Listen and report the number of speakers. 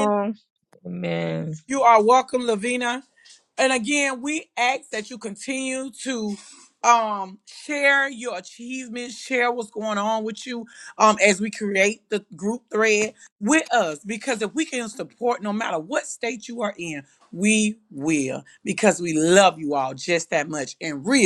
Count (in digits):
2